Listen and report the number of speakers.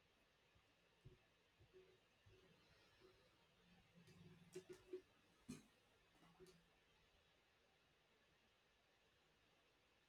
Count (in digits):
0